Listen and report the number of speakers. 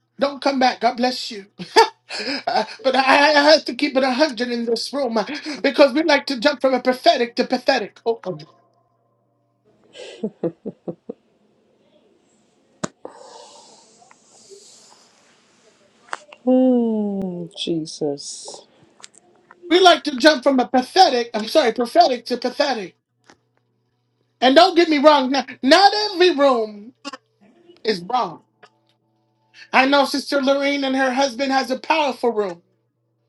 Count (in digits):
2